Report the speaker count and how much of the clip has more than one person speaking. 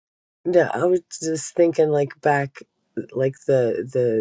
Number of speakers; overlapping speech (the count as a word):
one, no overlap